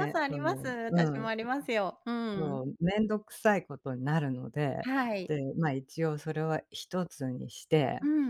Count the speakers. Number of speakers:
2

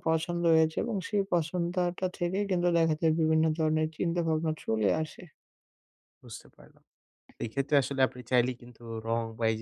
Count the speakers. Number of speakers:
2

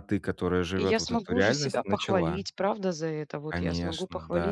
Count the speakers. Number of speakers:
2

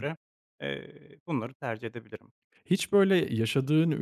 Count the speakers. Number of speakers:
2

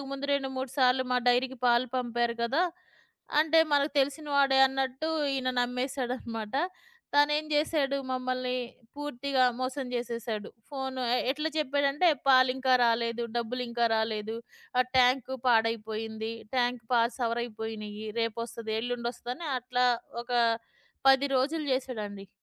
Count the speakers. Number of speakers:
1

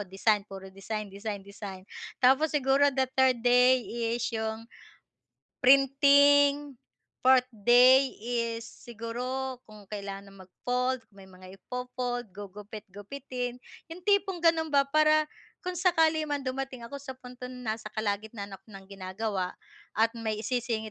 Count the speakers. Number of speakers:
1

